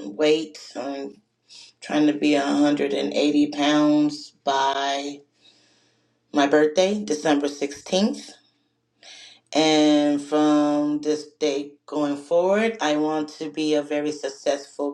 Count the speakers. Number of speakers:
one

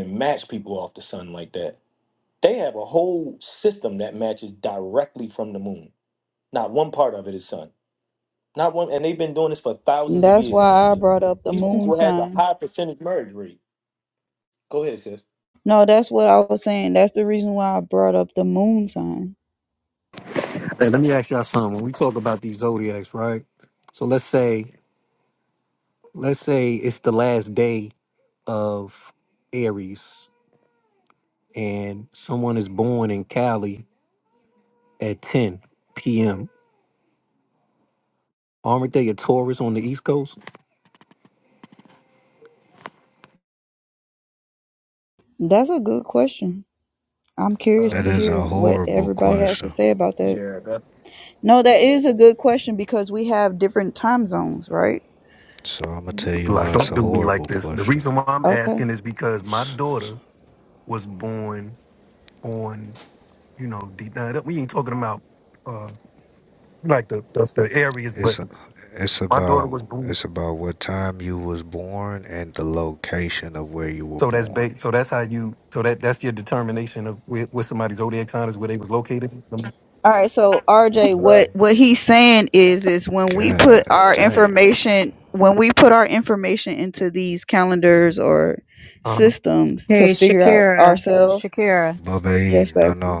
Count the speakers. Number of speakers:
five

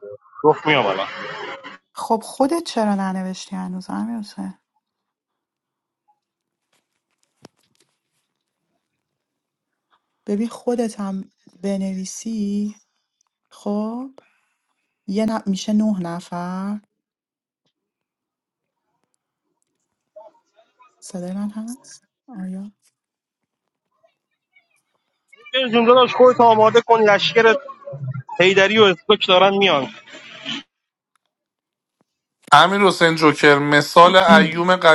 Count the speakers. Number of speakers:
three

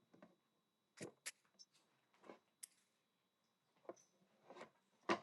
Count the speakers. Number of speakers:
zero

